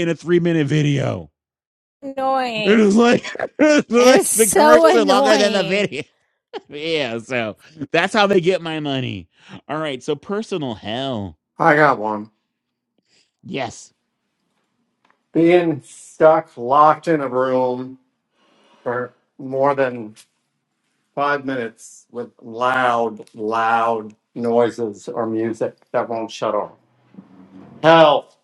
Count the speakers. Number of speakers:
3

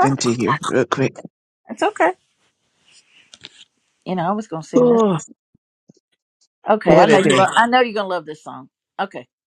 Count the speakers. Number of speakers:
2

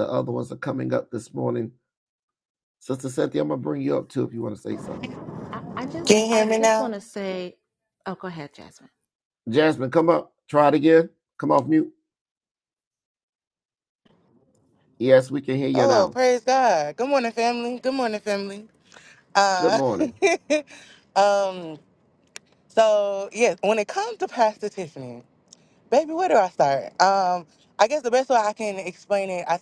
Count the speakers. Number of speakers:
3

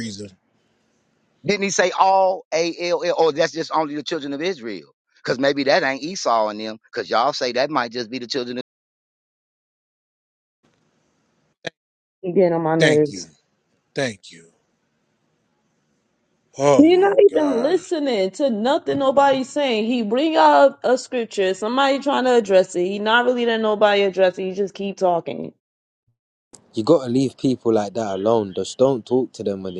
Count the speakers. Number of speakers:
4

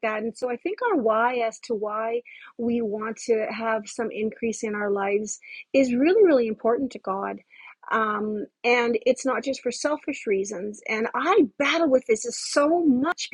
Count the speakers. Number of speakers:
1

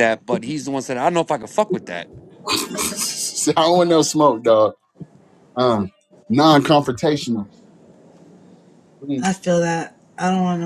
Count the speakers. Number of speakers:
3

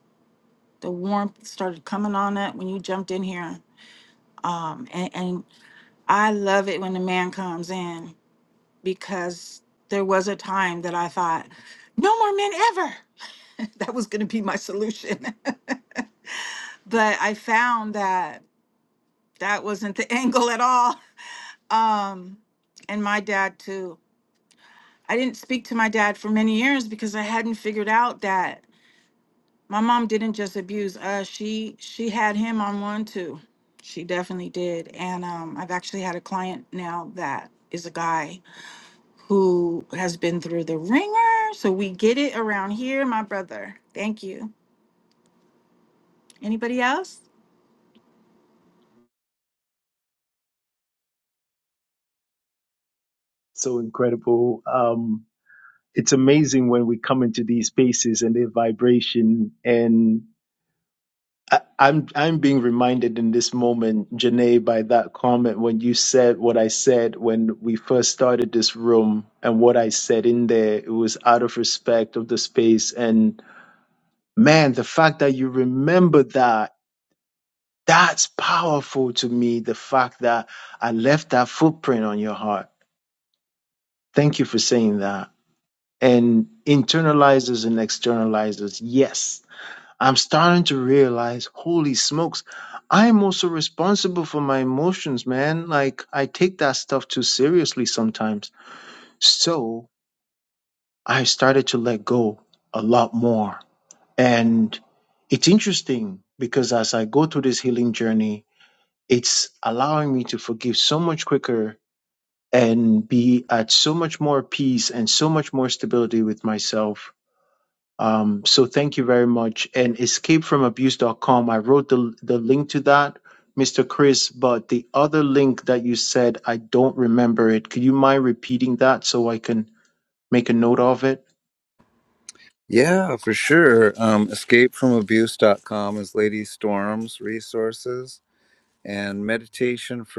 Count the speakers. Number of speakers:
3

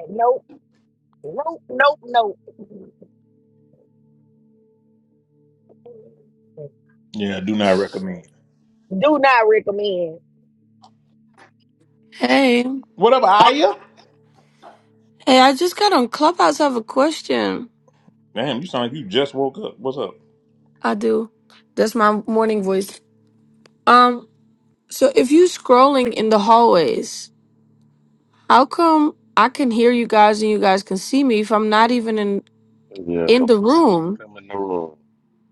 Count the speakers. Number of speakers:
4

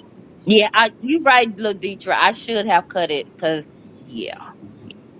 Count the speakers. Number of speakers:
1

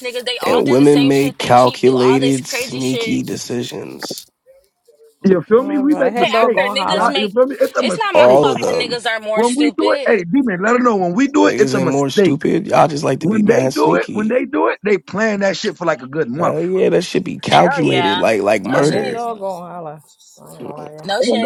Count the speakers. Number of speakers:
4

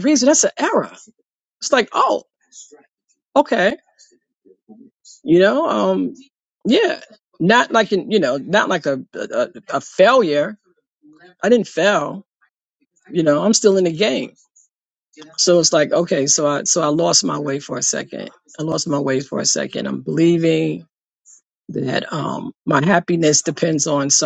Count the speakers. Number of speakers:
1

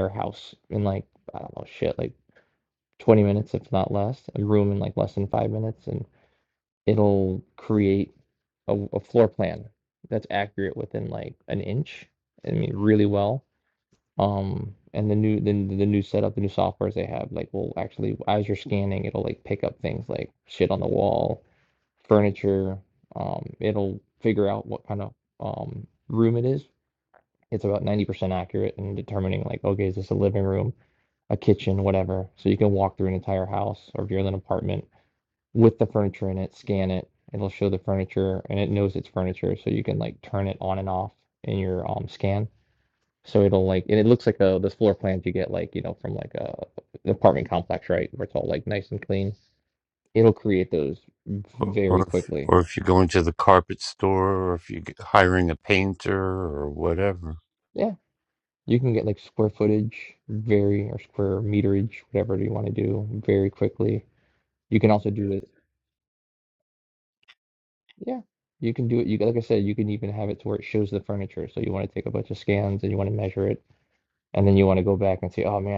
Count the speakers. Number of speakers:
2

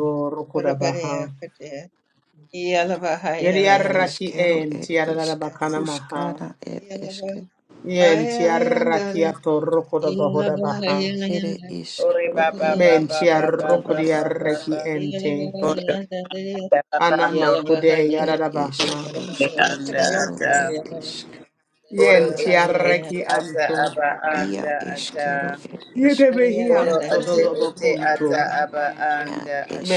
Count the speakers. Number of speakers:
4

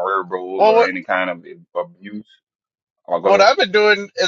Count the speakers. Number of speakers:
2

